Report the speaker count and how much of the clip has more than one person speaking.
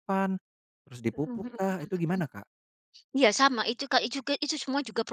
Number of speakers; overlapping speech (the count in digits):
2, about 12%